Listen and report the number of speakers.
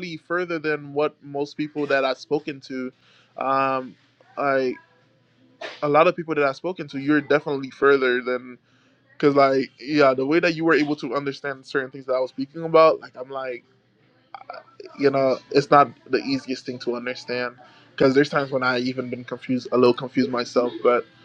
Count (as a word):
one